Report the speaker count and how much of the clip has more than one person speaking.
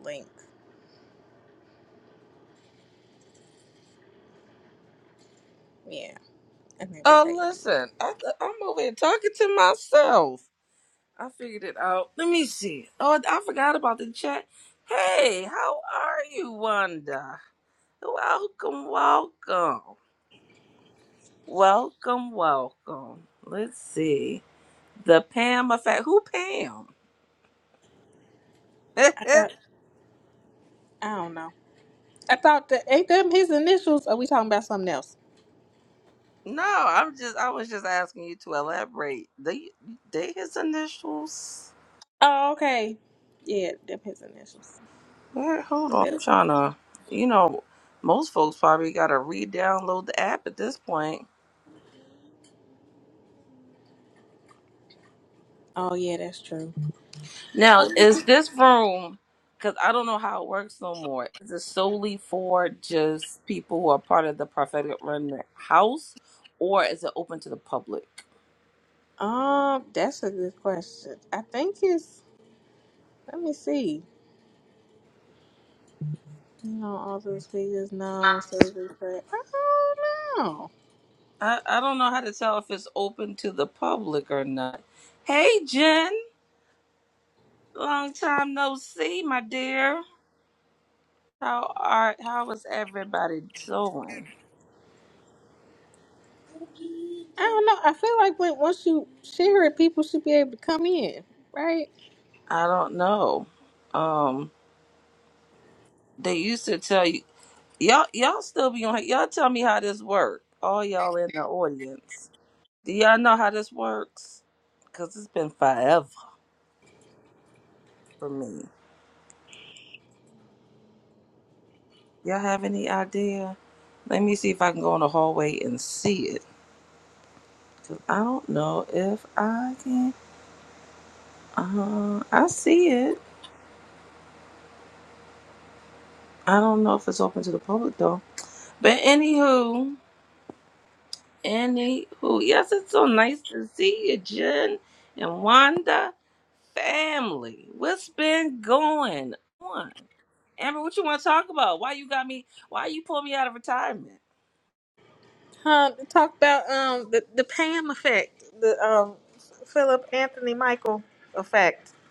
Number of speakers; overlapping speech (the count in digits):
2, under 1%